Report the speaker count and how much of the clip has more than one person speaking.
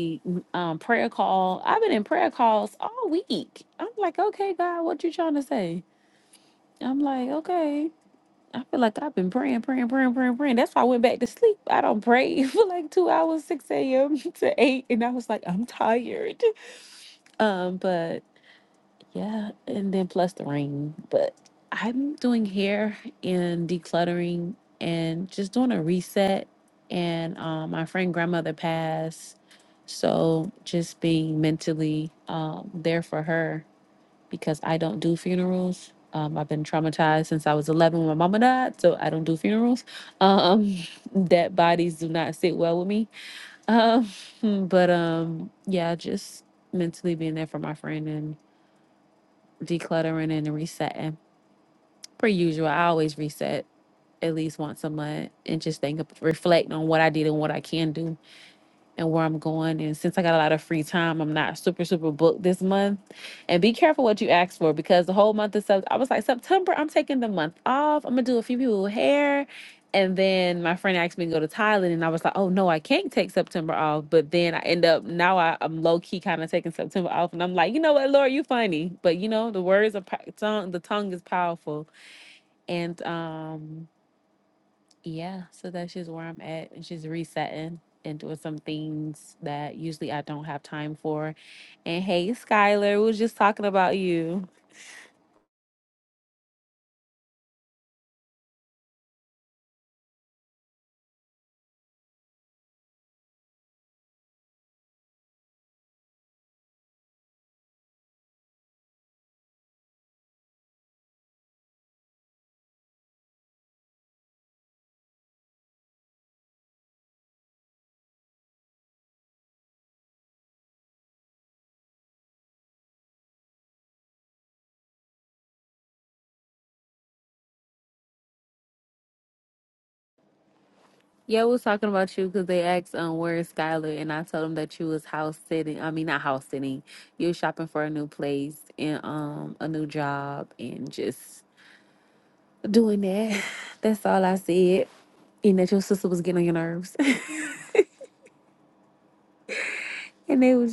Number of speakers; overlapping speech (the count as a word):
one, no overlap